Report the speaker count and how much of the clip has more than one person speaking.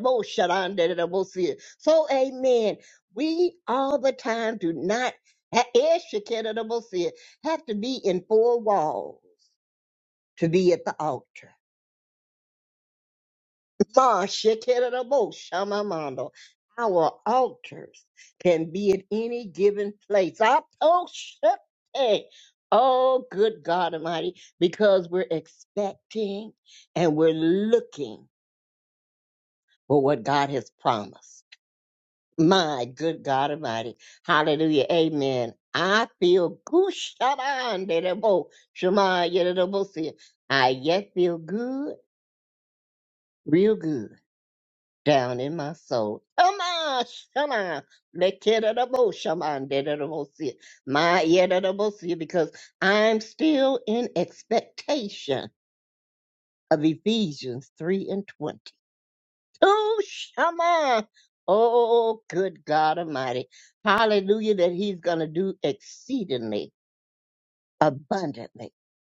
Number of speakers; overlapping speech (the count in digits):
1, no overlap